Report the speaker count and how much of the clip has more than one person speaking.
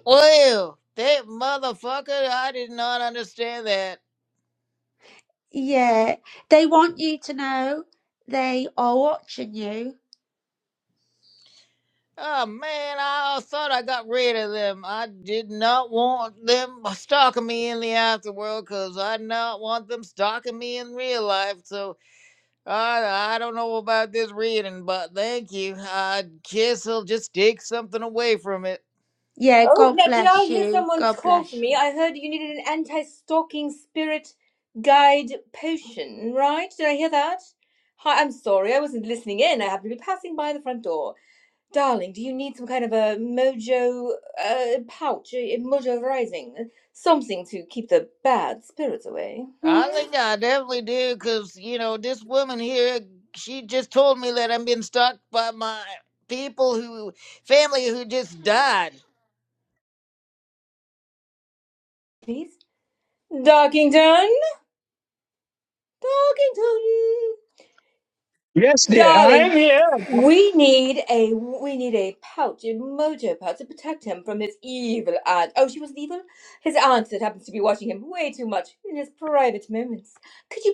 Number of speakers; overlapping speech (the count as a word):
four, about 4%